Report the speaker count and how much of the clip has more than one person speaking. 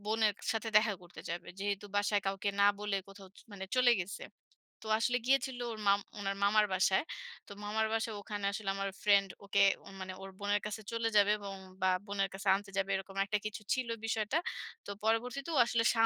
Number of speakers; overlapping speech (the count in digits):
1, no overlap